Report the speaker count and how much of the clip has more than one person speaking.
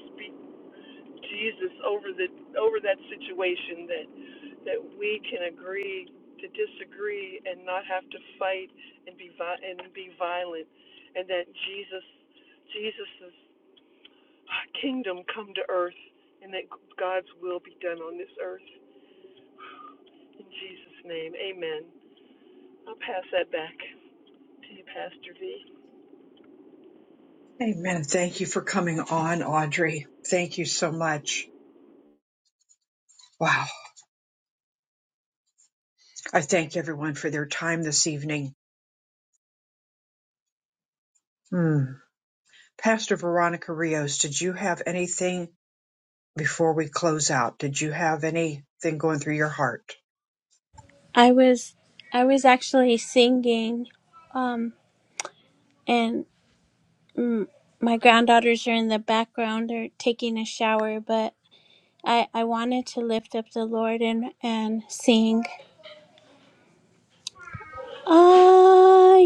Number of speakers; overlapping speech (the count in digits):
3, no overlap